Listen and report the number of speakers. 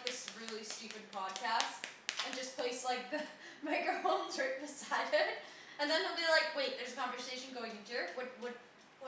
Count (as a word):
one